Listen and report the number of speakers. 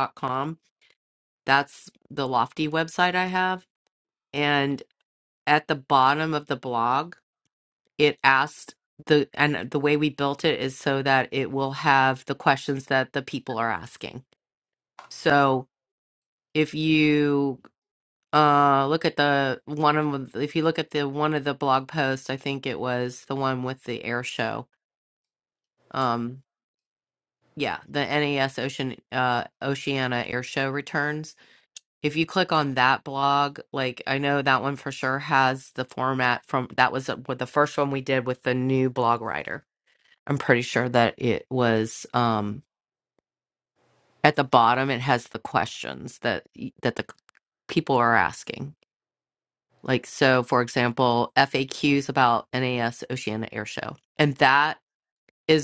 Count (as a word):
one